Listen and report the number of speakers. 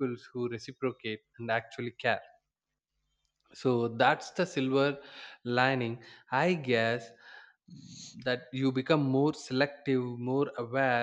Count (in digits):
1